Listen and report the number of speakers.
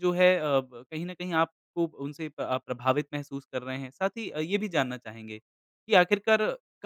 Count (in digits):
1